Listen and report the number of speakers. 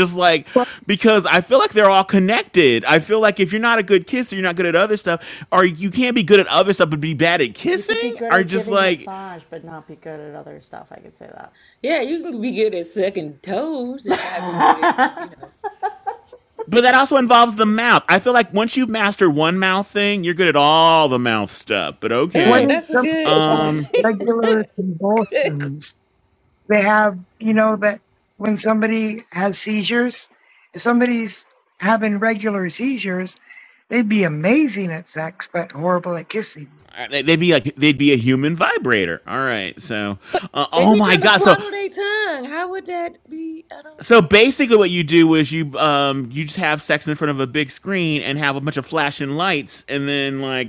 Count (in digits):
4